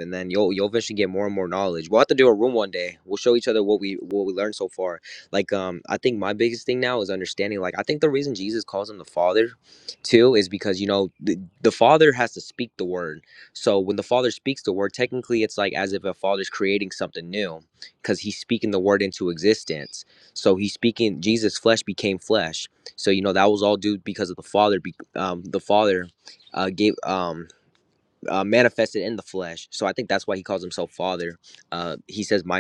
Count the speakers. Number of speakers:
1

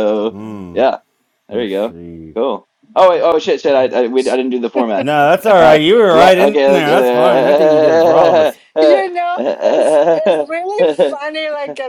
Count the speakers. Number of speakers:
3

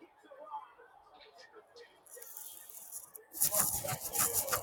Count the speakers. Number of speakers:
0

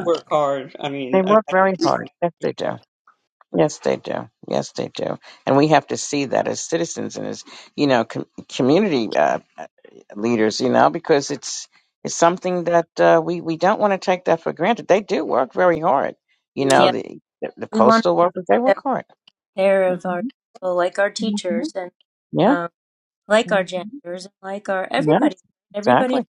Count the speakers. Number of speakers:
3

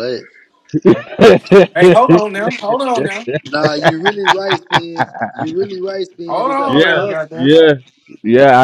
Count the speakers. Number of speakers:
3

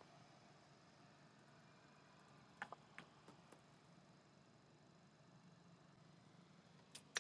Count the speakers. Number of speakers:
0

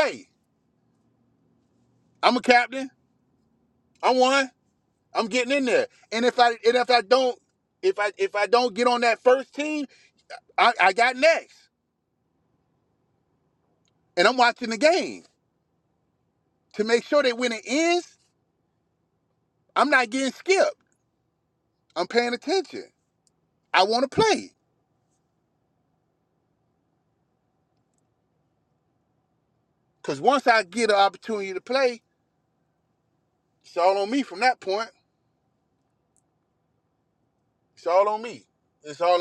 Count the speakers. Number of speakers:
1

